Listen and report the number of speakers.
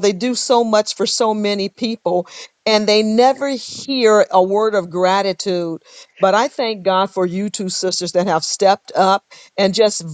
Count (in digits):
1